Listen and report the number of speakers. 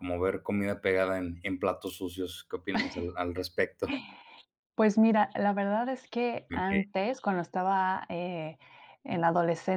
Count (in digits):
2